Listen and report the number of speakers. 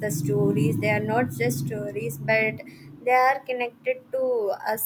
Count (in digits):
1